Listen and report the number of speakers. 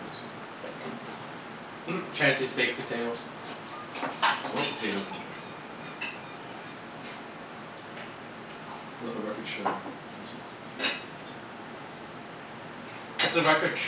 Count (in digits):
2